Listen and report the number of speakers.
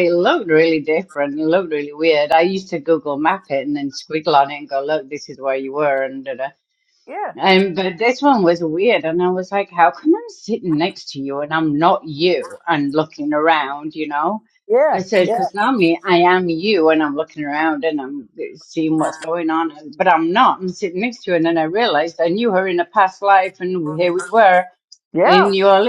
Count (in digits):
2